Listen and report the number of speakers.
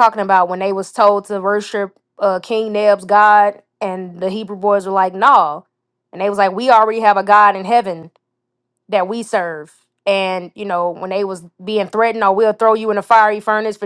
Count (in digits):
1